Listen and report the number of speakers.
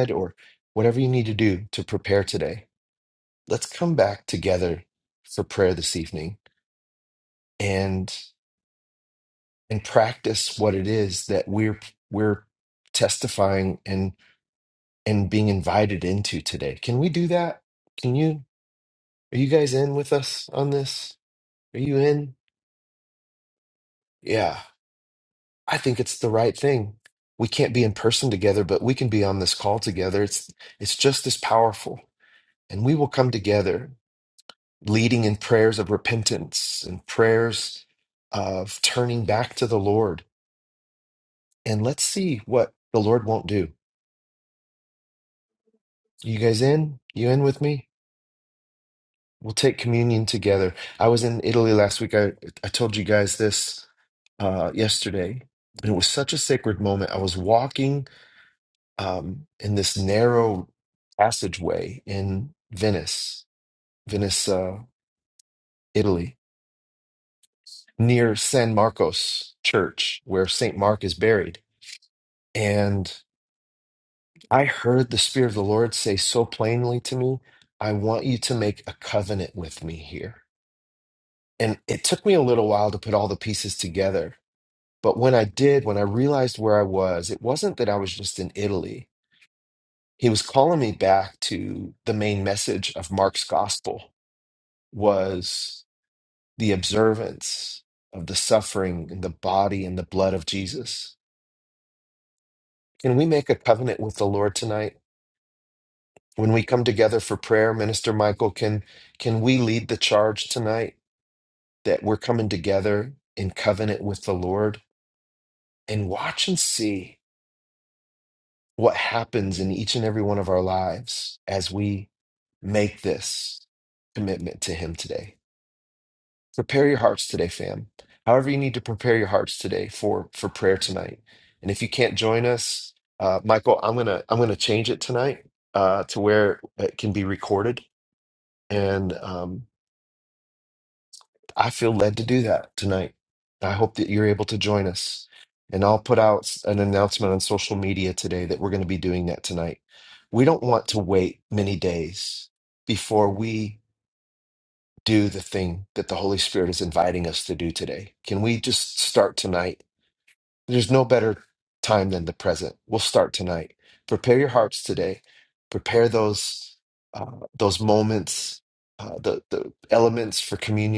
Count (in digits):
1